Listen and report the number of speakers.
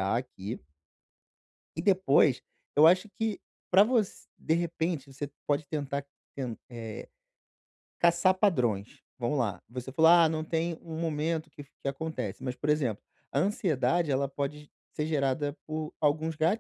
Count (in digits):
1